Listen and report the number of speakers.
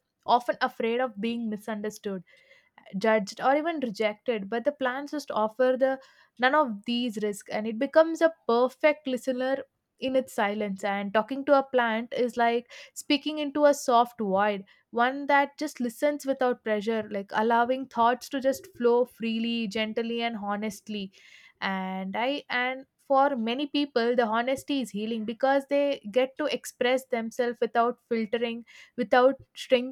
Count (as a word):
one